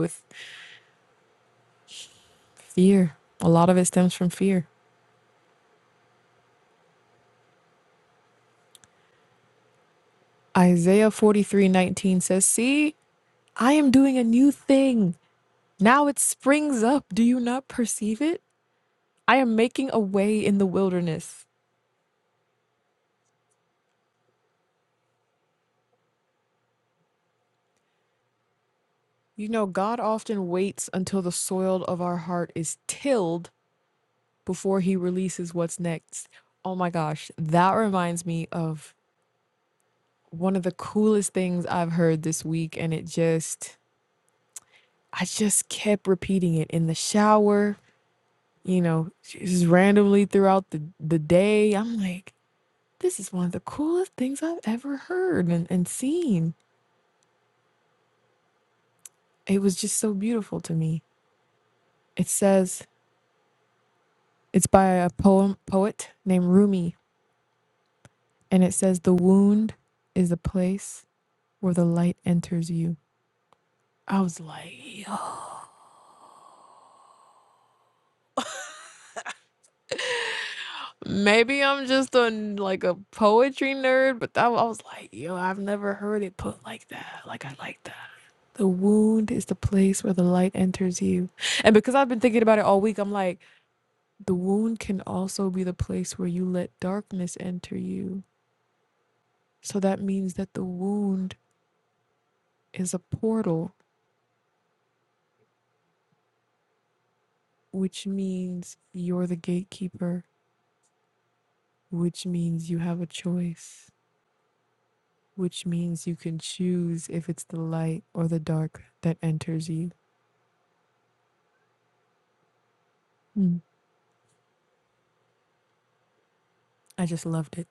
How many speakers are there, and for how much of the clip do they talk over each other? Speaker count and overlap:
1, no overlap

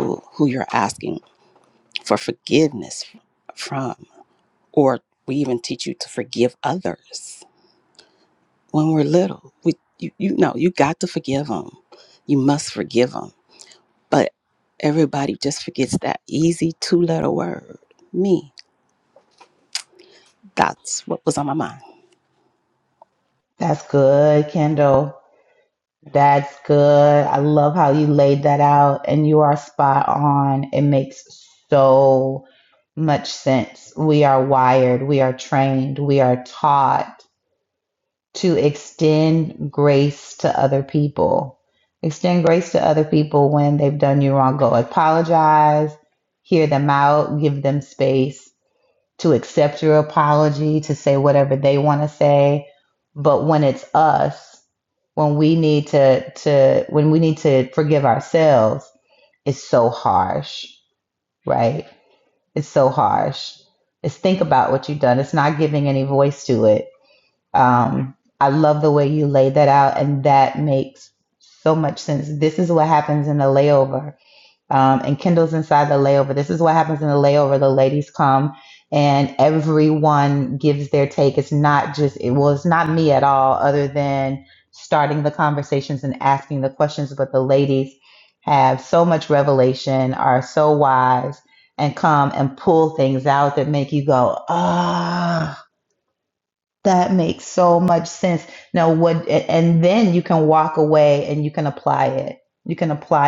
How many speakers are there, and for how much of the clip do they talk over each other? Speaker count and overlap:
2, no overlap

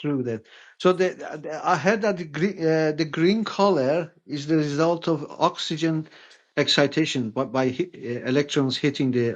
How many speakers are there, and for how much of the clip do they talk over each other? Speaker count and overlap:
1, no overlap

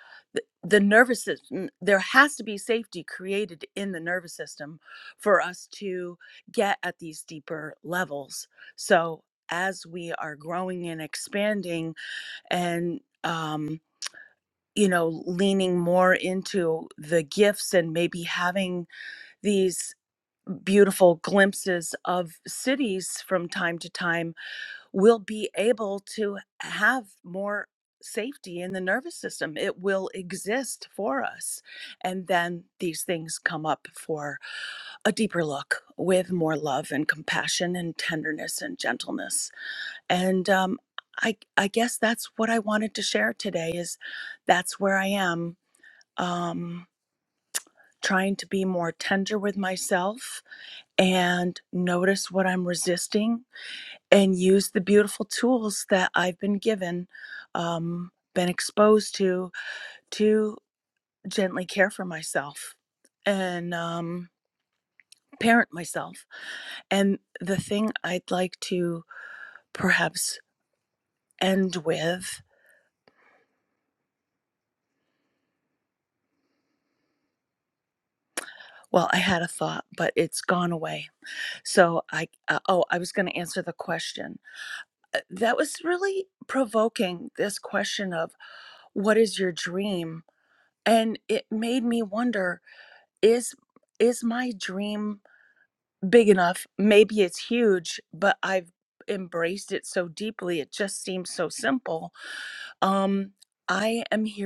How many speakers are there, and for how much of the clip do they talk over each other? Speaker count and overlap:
1, no overlap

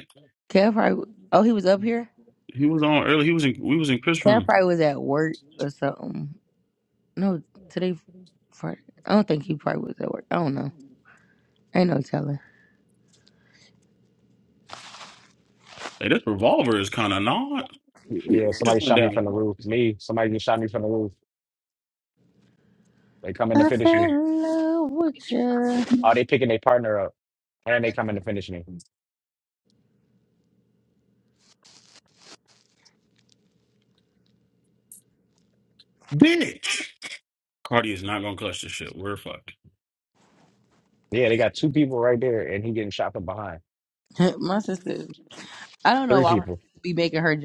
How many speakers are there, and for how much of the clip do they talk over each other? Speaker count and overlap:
3, about 4%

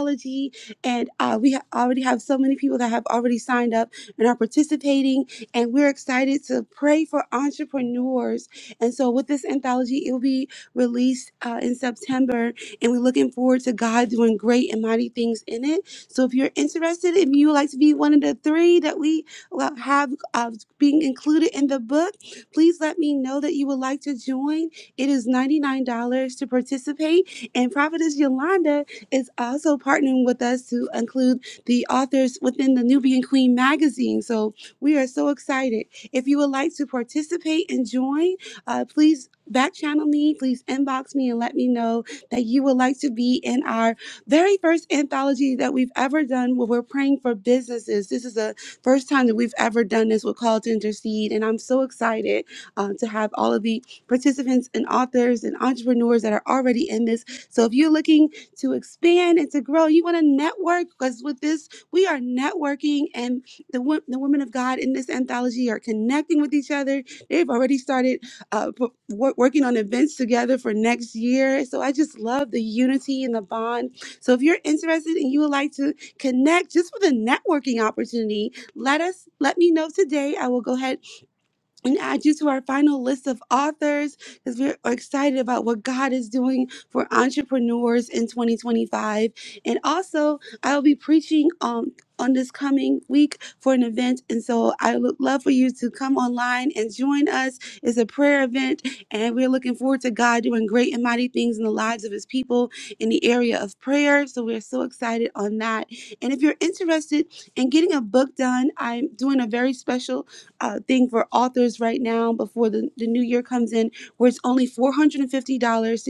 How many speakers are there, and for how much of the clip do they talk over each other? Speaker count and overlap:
1, no overlap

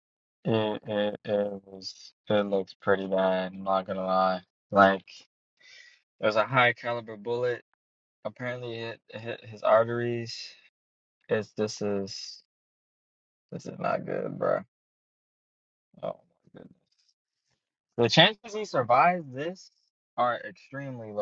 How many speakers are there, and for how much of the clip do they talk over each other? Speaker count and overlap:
1, no overlap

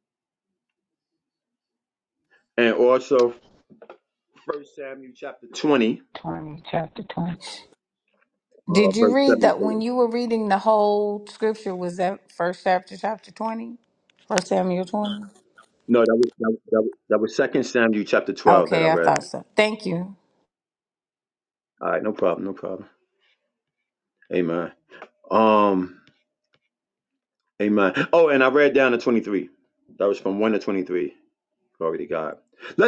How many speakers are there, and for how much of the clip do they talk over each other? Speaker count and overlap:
2, about 6%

